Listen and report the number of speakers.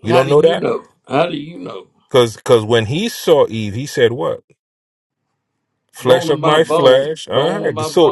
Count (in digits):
2